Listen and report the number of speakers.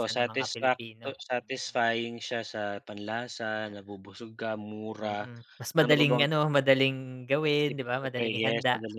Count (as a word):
two